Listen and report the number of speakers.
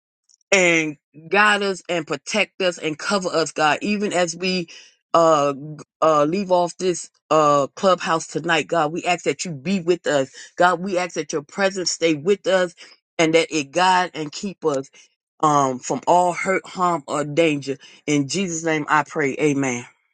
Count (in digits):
1